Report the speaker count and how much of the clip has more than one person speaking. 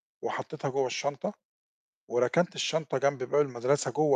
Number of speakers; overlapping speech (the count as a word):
one, no overlap